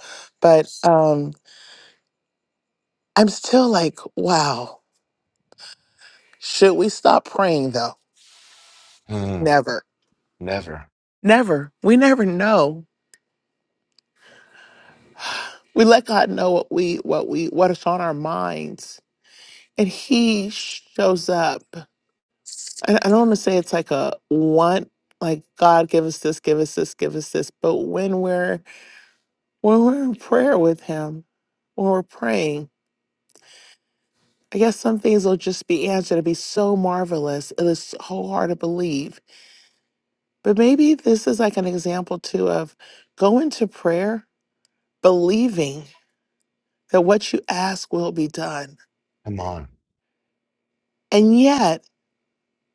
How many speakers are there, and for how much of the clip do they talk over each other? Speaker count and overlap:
two, under 1%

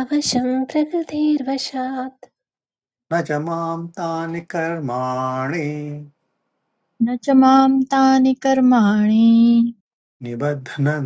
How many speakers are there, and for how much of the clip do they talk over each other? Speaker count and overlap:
three, no overlap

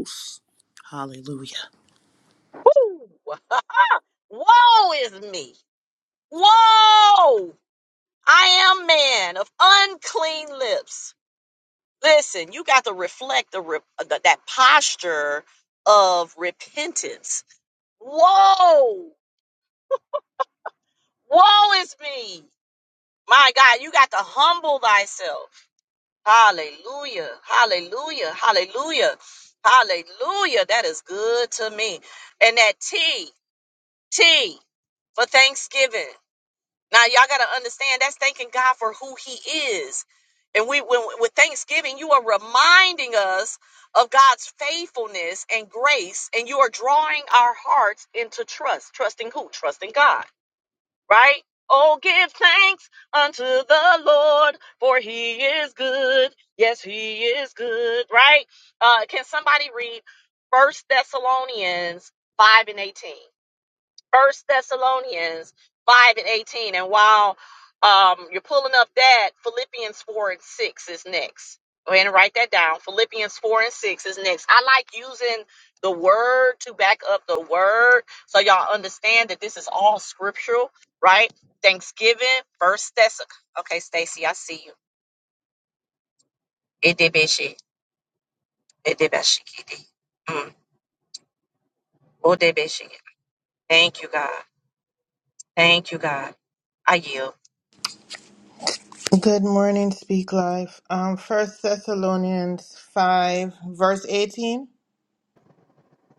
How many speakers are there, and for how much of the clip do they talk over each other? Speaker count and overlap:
three, no overlap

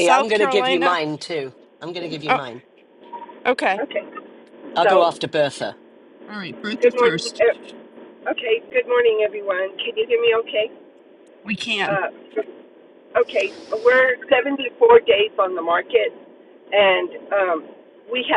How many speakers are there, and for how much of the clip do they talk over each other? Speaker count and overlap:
three, about 12%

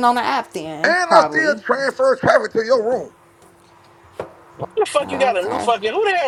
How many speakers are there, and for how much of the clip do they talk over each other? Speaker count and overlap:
three, about 23%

